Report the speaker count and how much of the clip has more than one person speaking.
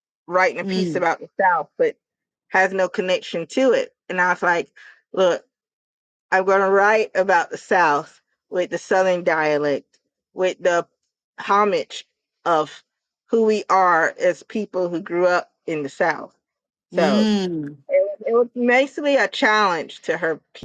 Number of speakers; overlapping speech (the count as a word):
two, about 3%